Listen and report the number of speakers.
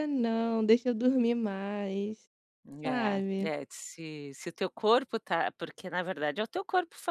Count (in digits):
2